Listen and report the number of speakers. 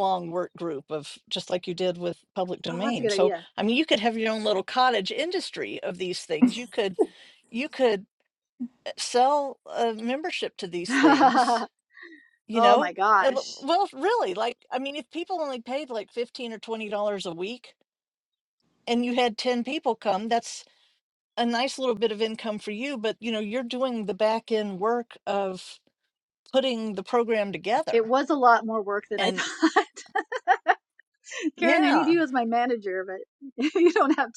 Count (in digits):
2